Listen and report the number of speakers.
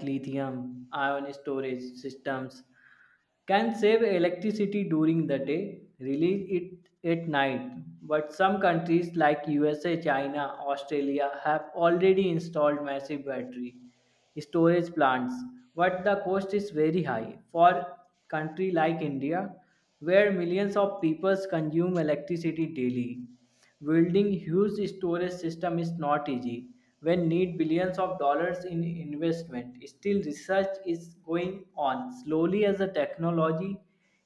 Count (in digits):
1